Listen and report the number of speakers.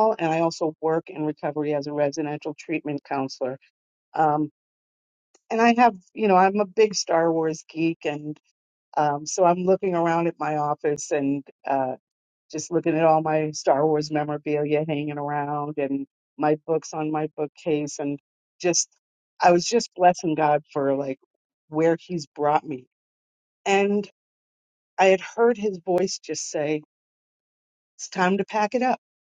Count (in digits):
1